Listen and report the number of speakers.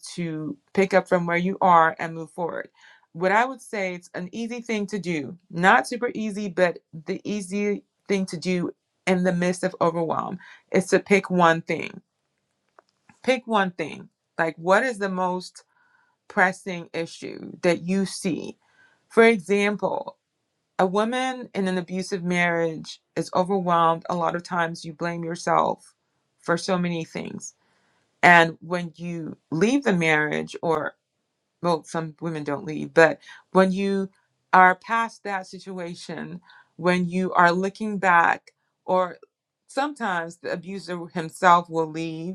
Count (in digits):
1